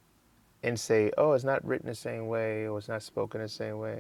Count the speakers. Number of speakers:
1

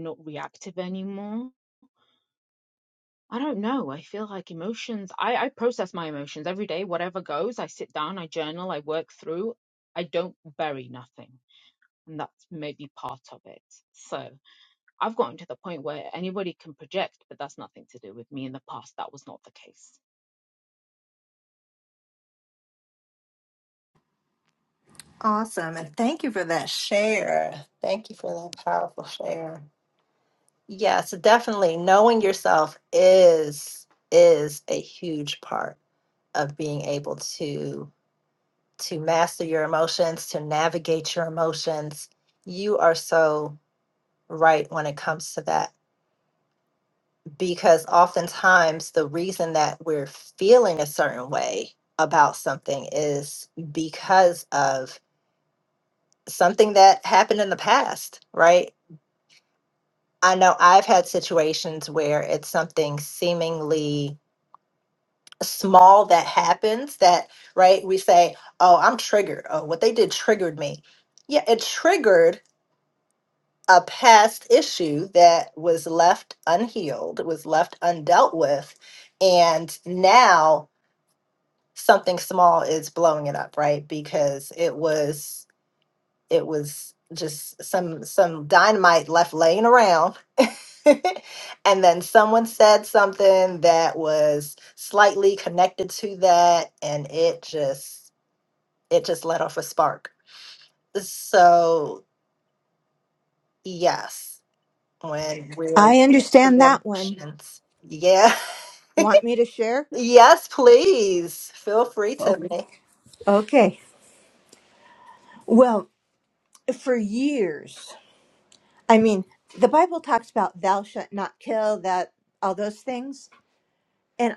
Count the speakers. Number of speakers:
3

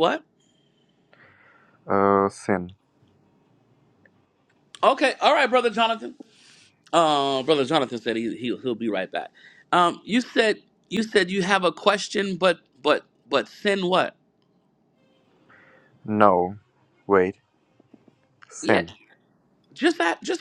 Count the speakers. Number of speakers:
2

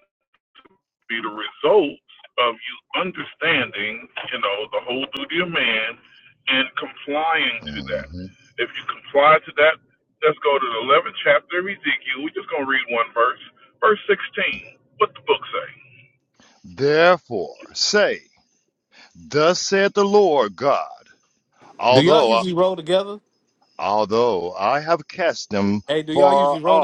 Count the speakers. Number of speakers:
3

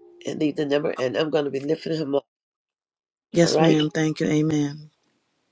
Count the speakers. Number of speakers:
2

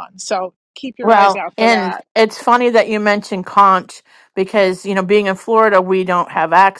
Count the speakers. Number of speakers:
2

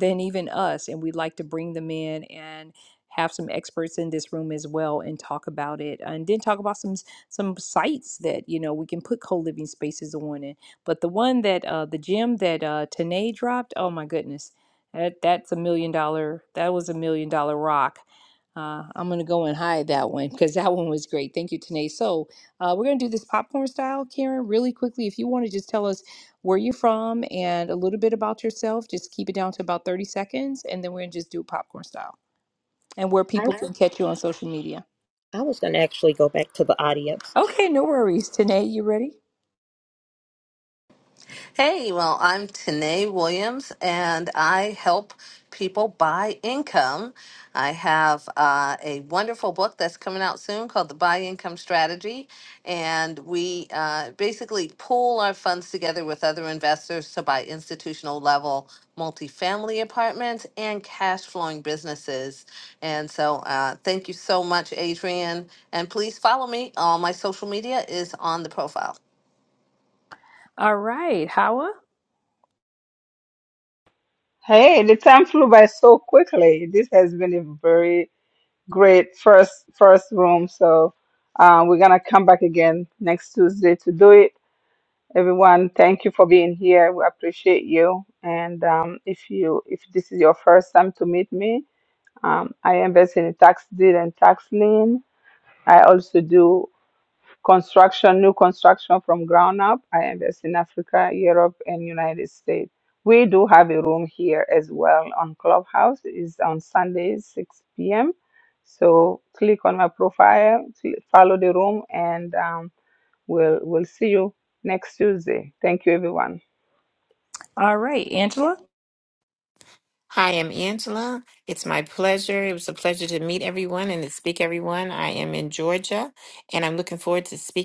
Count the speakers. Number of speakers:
5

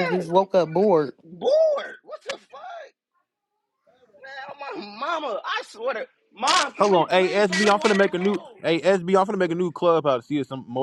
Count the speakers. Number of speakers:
3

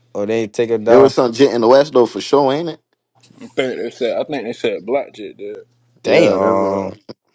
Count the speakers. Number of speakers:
3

